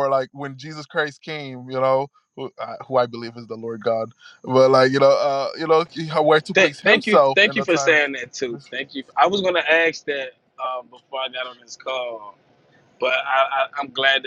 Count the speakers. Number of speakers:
2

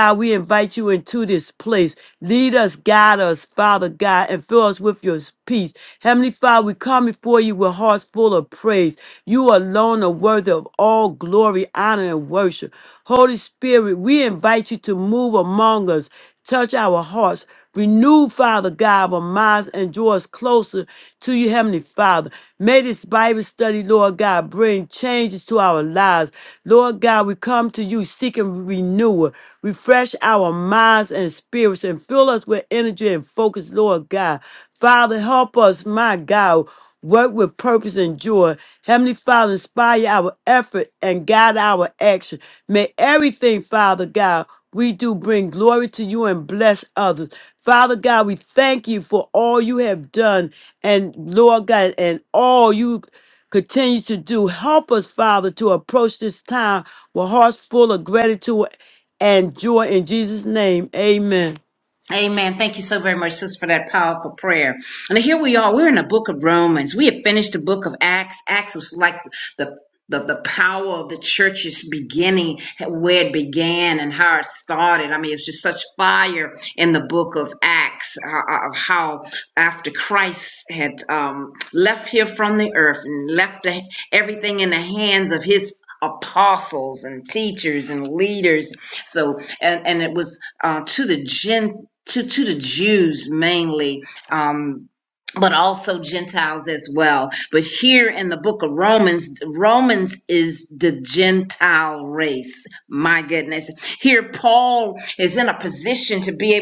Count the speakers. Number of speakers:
2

